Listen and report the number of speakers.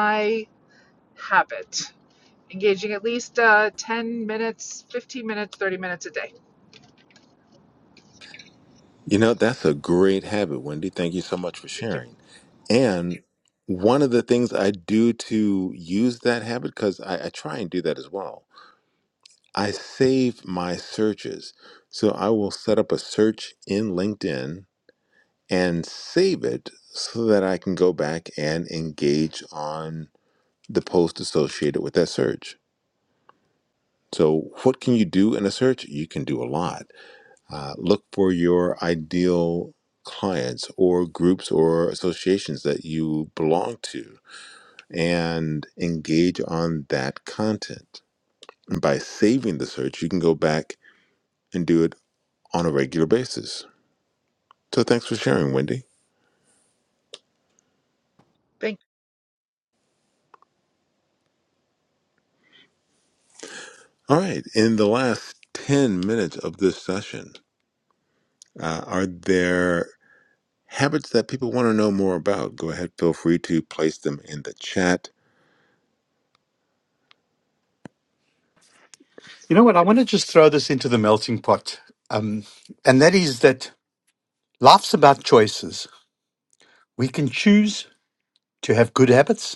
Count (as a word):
three